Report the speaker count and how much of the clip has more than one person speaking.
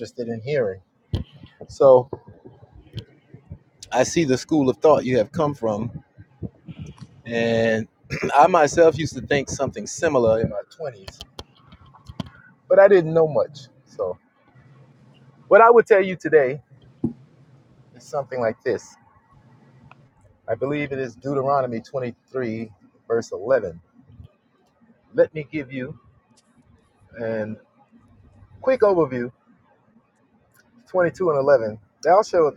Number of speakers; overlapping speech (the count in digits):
1, no overlap